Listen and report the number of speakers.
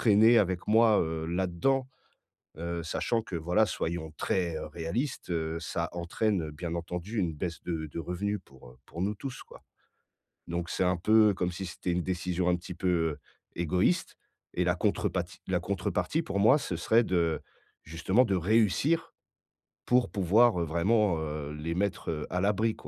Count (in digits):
1